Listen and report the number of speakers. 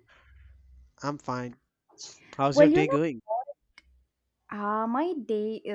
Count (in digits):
2